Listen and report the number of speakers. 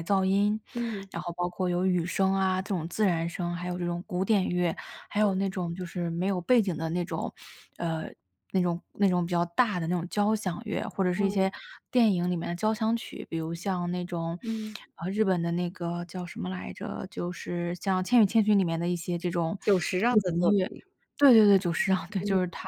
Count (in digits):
2